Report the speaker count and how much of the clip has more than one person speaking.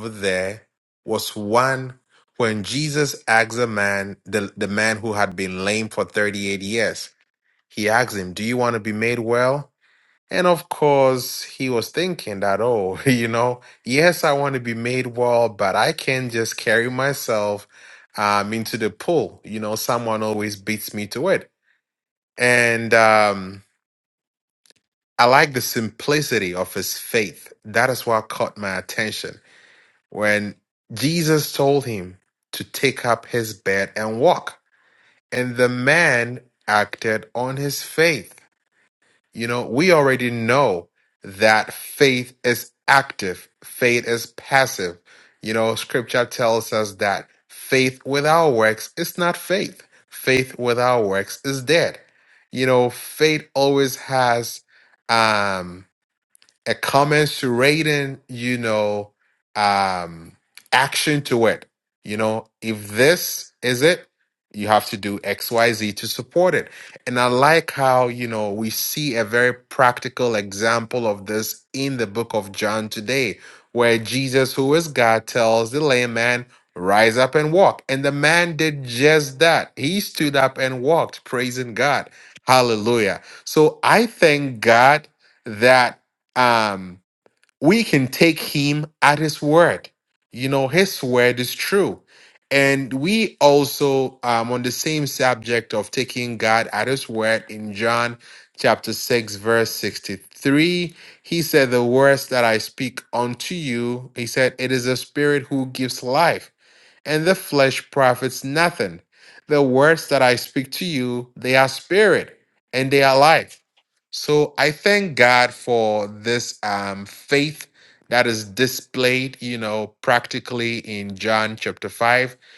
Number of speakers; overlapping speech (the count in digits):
1, no overlap